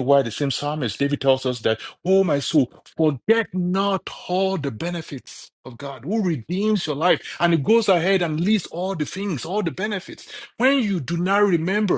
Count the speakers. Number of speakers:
1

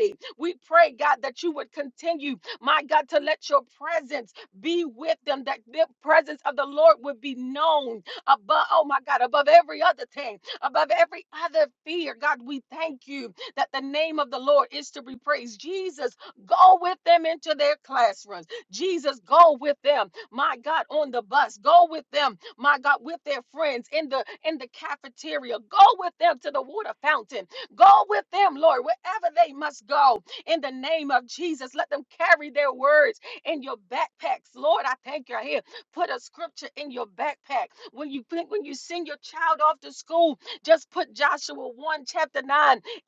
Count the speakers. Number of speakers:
1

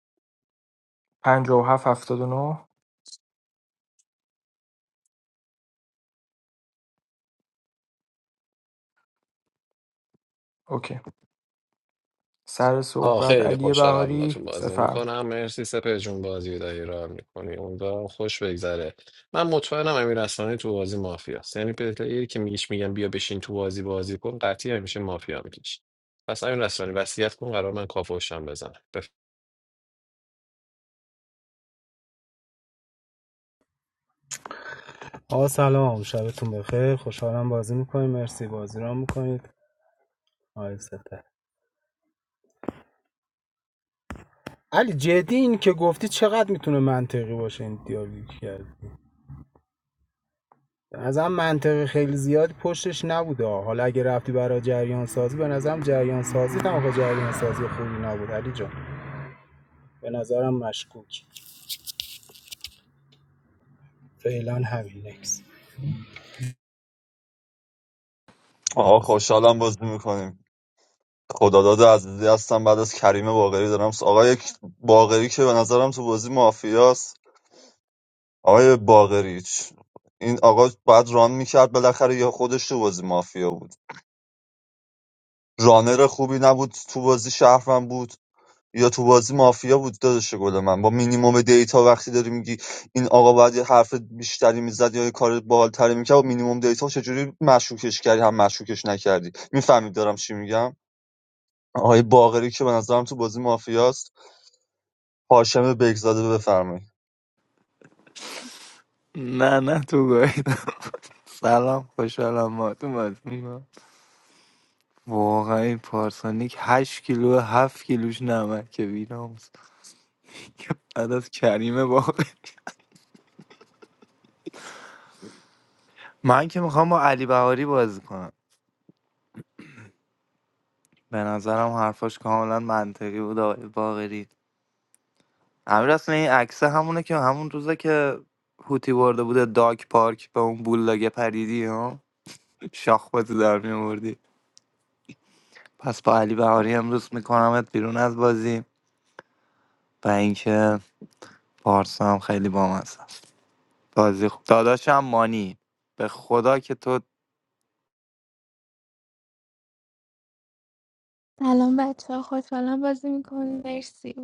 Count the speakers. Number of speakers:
6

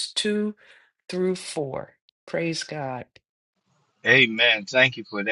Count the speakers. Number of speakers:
2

